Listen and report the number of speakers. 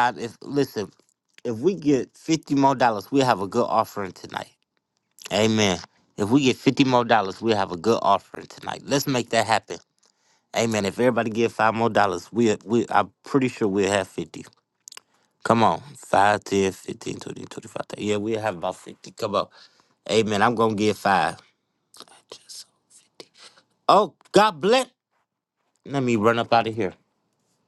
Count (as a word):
one